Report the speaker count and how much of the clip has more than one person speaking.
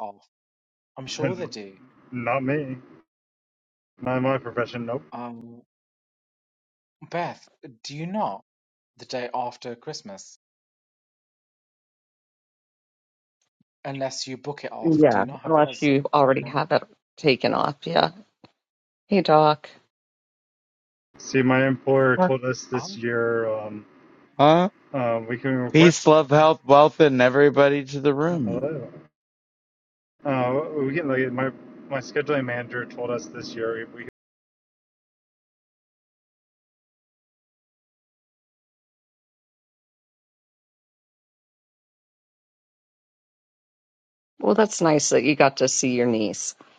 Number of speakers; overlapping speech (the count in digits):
4, about 5%